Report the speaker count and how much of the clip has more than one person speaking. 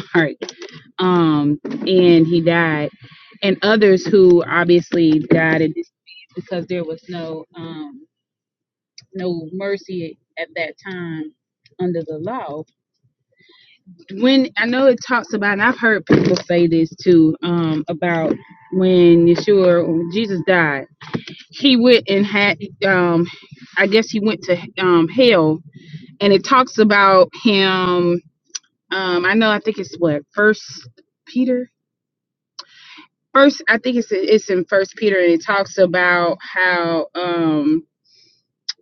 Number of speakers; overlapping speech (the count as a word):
one, no overlap